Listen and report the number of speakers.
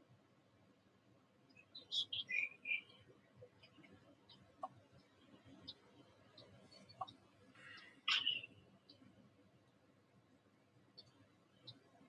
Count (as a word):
zero